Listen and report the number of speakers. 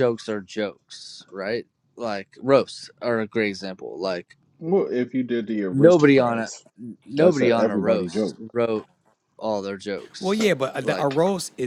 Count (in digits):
3